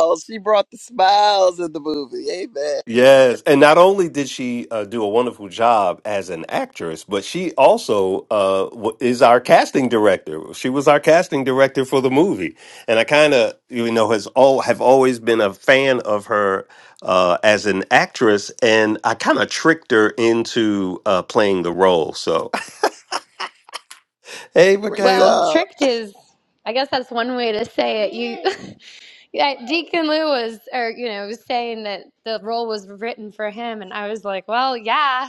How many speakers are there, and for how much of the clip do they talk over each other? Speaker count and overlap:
3, about 2%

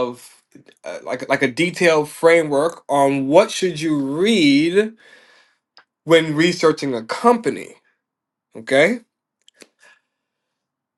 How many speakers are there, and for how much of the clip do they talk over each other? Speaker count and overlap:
1, no overlap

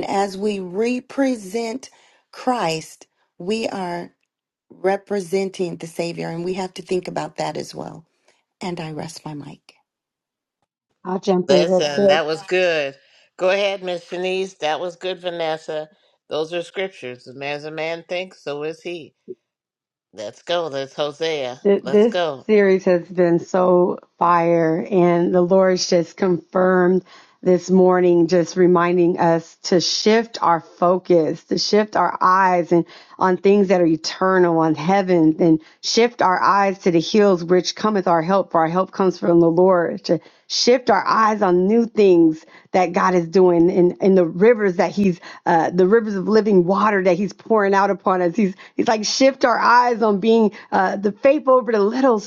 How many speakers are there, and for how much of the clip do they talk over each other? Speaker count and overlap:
3, about 2%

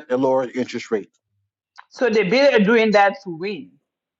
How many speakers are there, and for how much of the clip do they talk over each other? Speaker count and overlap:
2, no overlap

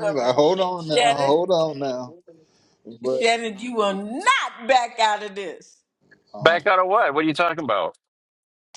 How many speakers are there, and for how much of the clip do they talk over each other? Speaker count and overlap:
3, about 13%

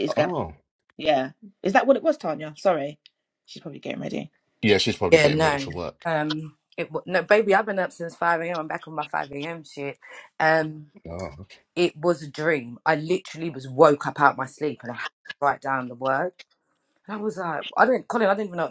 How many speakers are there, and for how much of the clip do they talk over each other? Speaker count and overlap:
3, about 5%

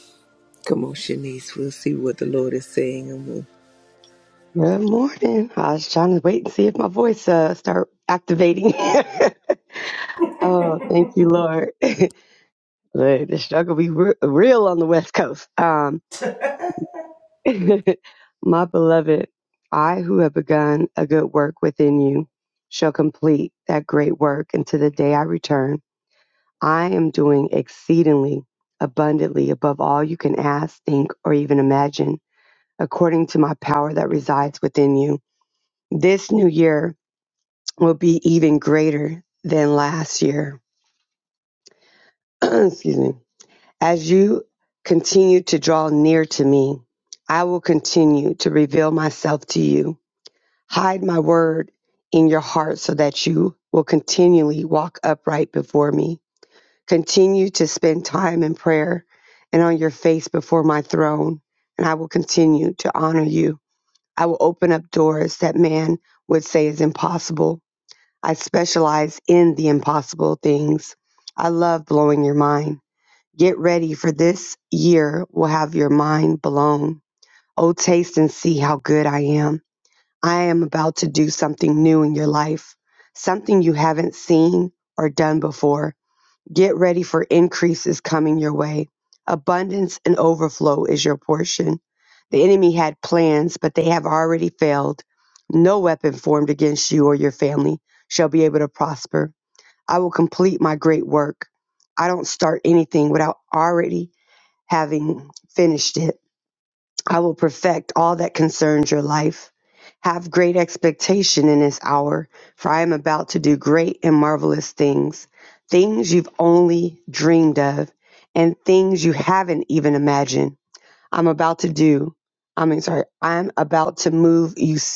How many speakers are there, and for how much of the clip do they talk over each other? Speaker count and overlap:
2, no overlap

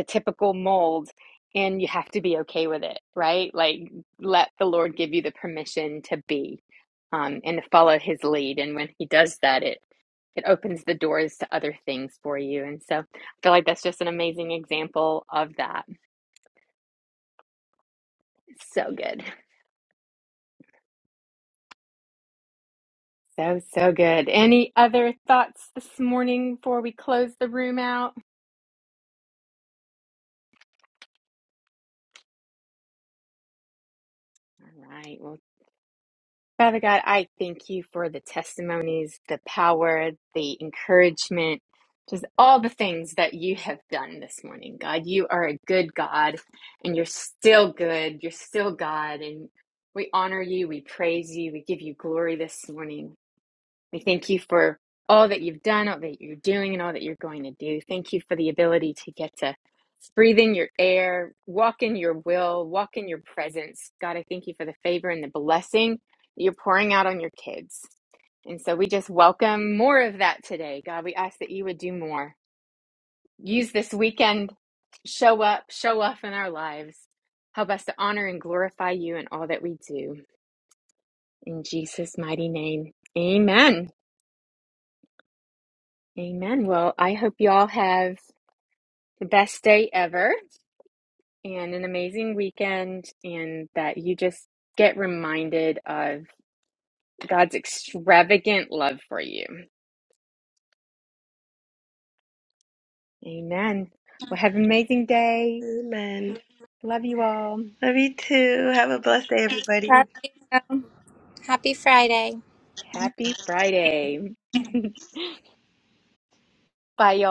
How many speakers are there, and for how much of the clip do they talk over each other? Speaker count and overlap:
3, under 1%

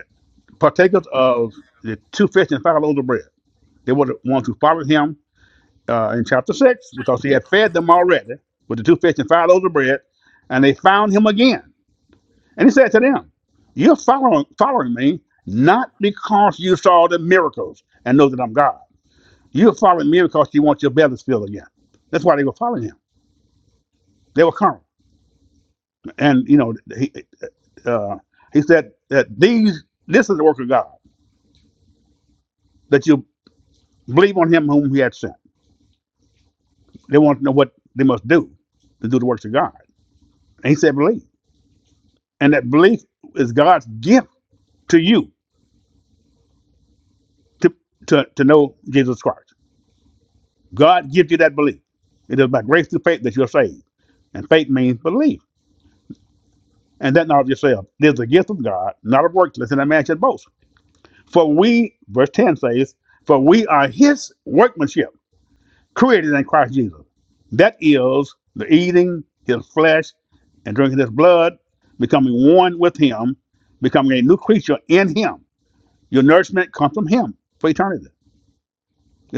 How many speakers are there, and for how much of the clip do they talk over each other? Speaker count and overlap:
1, no overlap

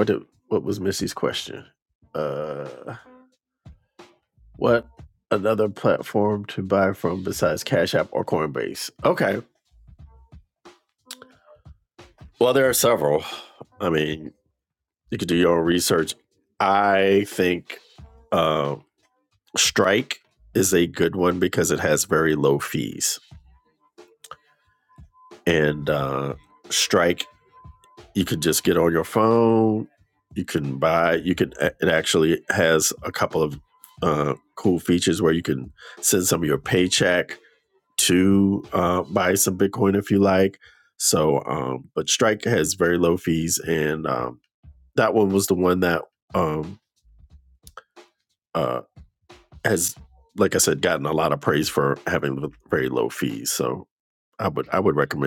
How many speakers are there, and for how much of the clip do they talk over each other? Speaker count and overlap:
1, no overlap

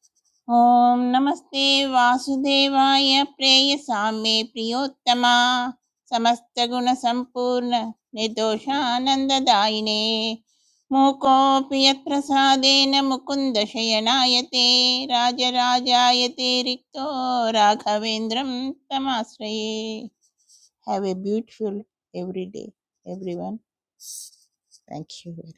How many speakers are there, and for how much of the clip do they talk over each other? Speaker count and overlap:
1, no overlap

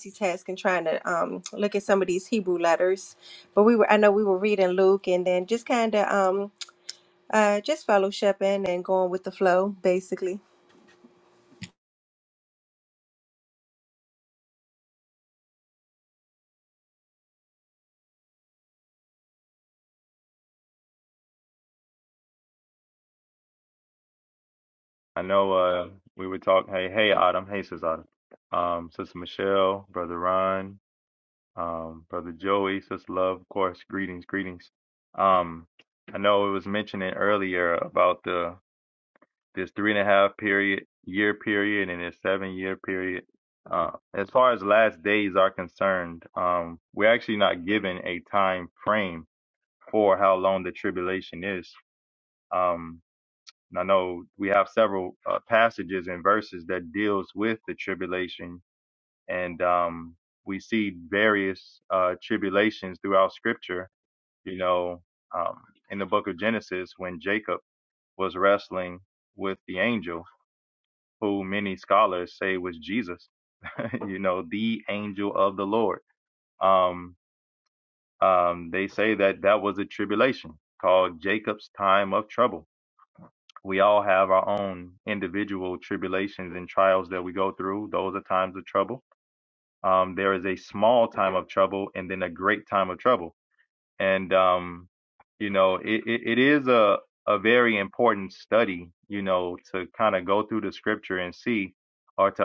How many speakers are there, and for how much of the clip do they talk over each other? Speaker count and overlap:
2, no overlap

